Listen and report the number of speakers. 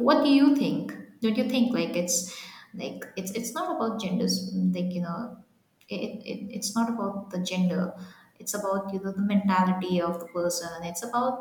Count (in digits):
1